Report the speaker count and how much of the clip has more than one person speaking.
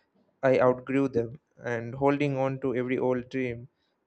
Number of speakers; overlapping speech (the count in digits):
1, no overlap